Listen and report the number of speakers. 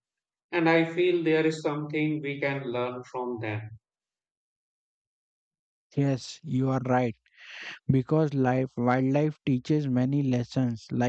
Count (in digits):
2